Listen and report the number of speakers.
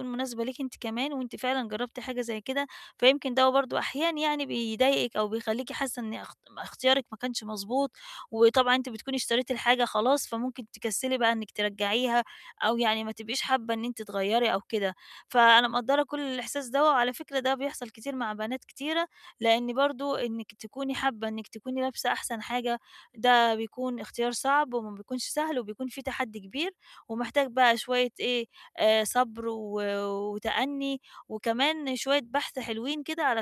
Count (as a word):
one